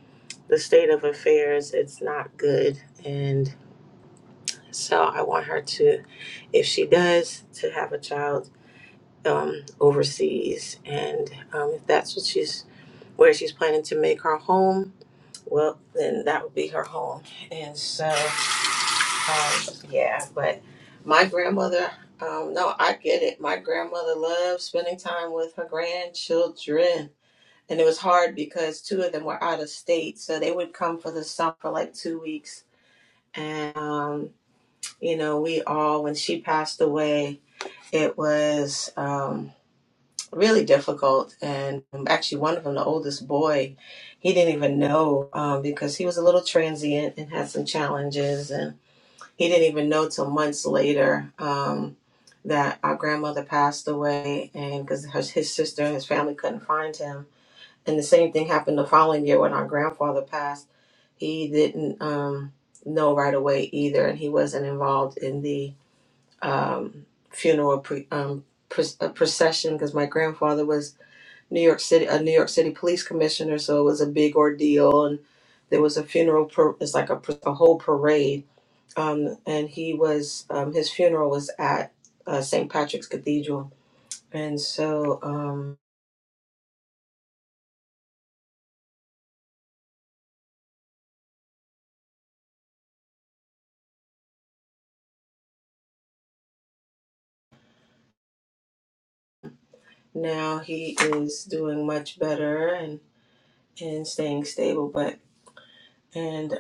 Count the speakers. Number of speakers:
1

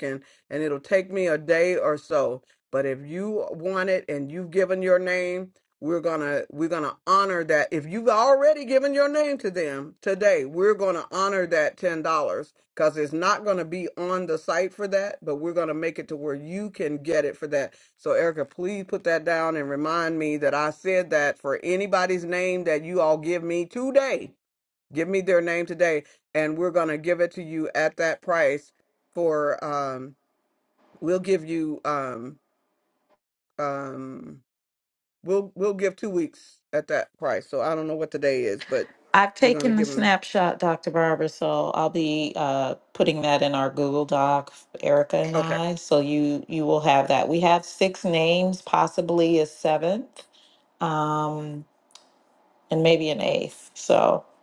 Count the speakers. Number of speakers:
2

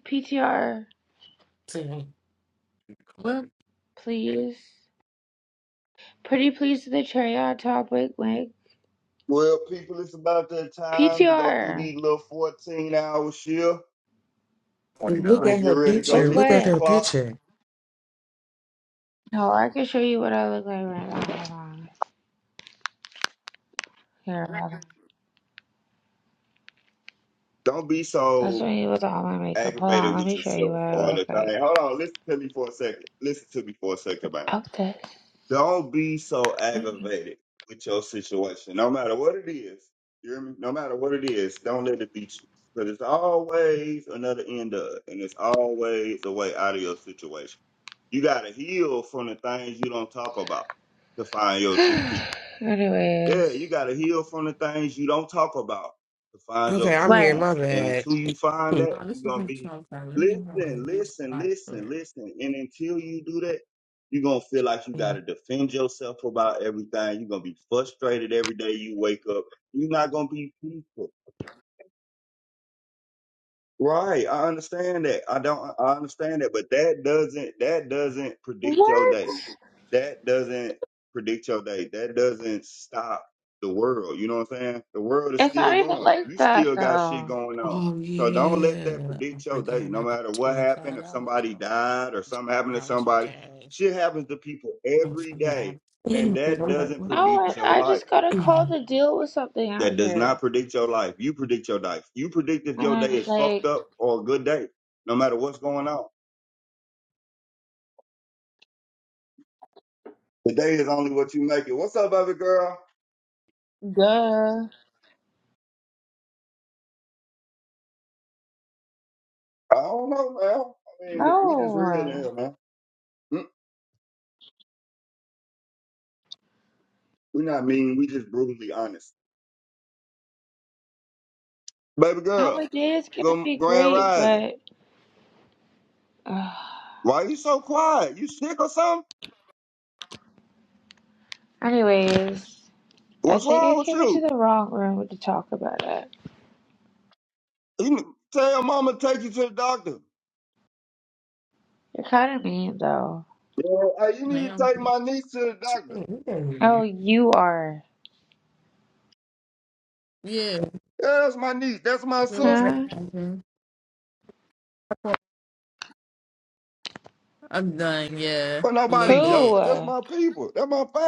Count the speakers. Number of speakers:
4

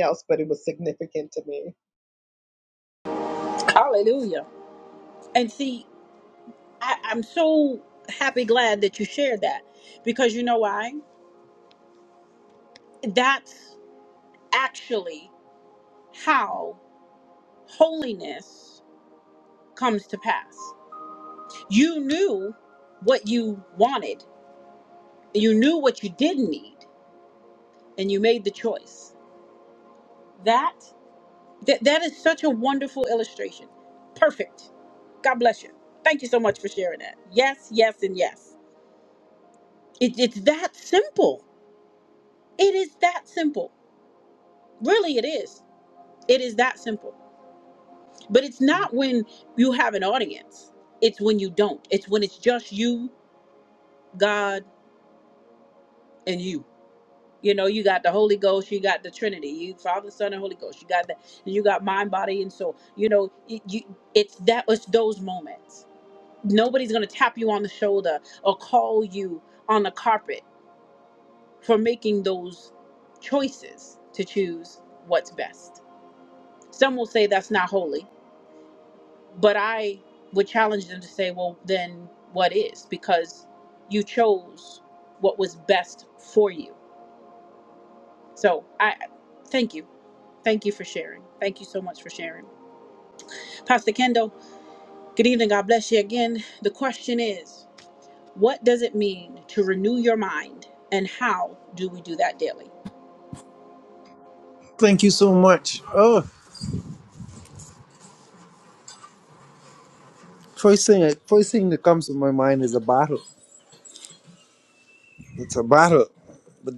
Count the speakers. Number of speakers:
3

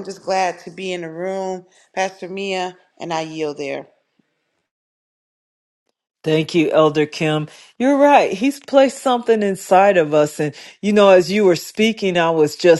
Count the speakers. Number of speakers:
2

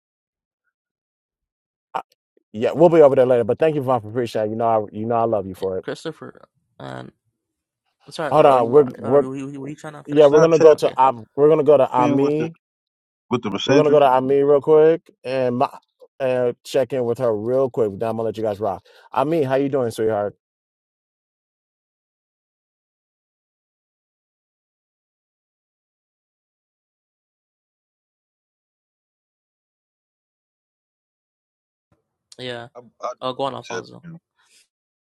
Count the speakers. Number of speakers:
3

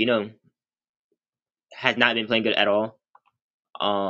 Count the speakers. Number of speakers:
1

